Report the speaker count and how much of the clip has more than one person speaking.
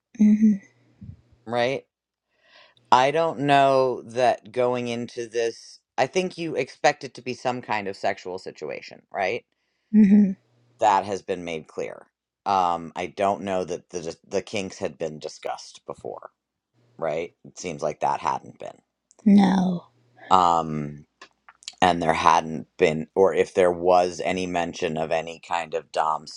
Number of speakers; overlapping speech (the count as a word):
two, no overlap